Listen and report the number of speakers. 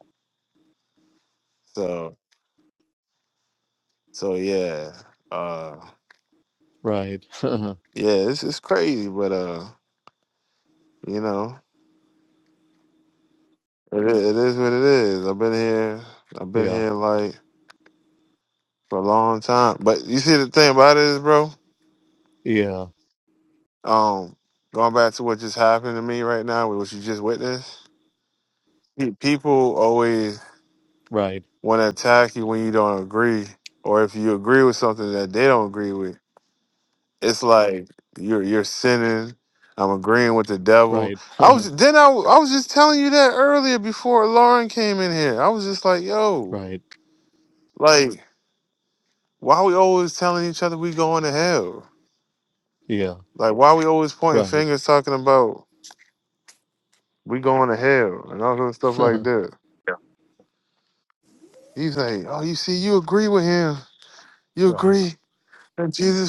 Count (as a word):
two